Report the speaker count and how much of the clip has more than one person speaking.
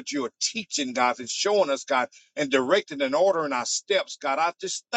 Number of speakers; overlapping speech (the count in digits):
1, no overlap